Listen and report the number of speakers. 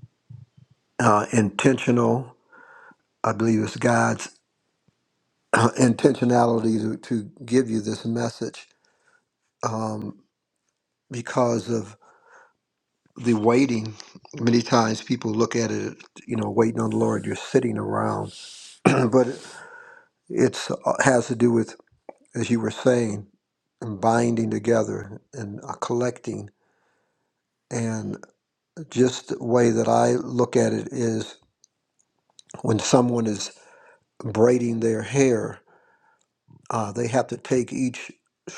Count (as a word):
one